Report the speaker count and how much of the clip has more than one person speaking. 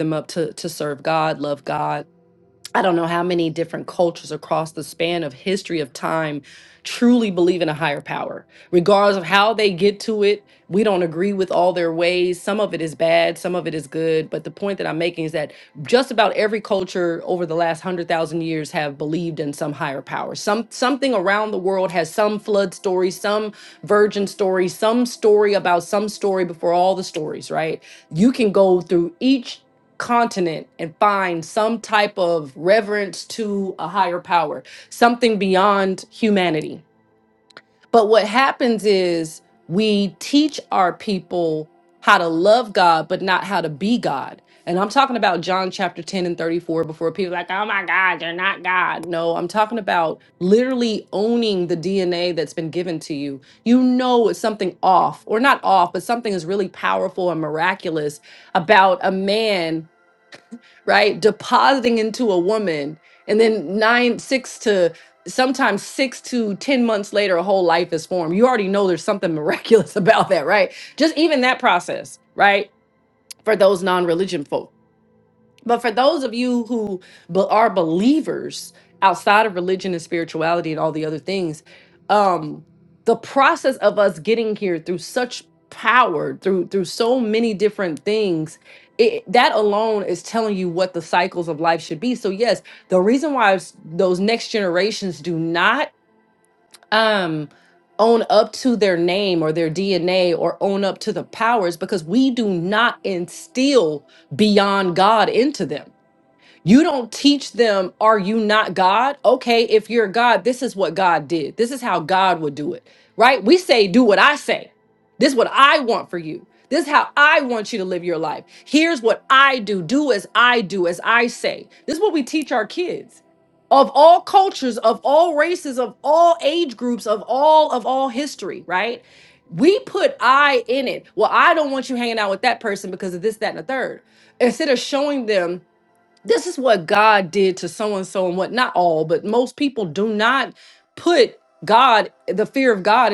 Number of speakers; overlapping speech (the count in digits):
1, no overlap